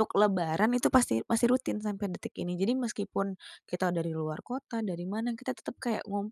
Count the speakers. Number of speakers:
one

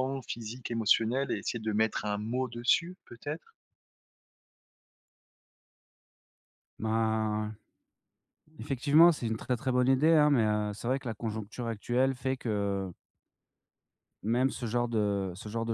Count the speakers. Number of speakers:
two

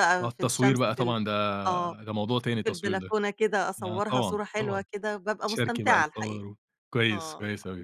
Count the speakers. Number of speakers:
two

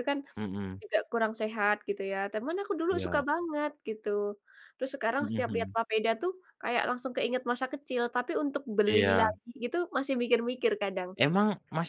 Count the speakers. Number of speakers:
two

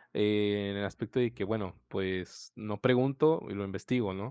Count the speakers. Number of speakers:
one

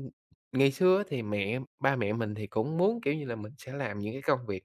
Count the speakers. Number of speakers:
one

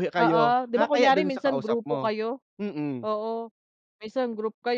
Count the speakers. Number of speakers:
two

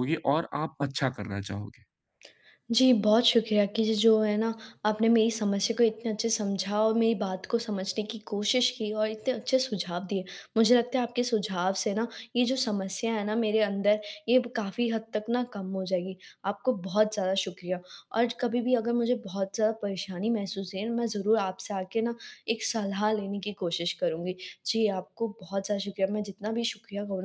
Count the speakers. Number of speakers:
two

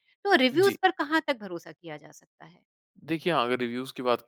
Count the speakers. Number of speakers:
two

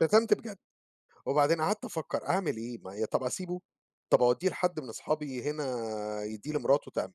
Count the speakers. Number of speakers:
one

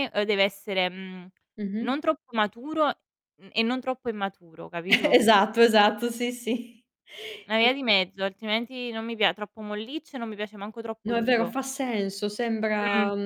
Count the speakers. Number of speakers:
two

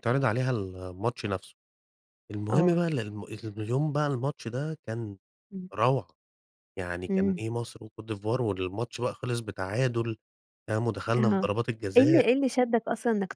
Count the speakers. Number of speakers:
two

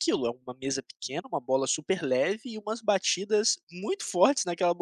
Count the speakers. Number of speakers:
one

